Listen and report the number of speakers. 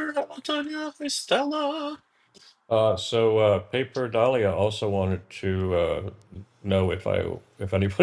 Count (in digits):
2